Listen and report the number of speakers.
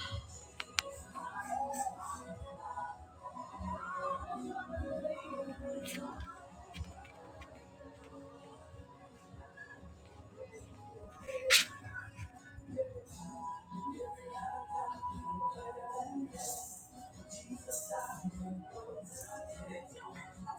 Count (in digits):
0